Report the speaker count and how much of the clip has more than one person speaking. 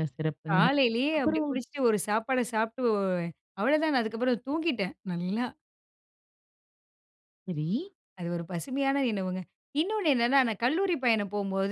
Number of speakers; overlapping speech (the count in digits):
2, about 5%